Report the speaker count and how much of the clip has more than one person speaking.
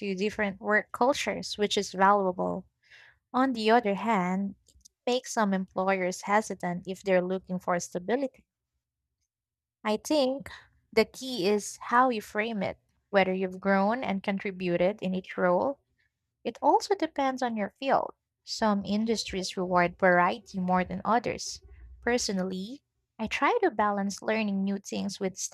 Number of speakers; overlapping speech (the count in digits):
1, no overlap